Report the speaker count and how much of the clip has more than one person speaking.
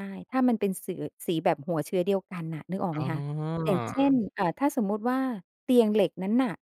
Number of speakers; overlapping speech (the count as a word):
two, about 10%